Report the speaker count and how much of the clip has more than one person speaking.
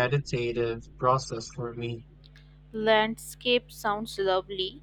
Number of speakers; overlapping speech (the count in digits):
2, no overlap